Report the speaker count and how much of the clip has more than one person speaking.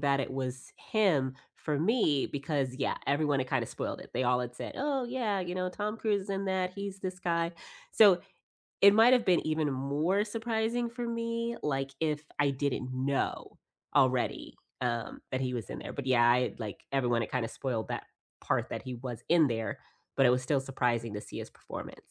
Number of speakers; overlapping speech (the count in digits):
1, no overlap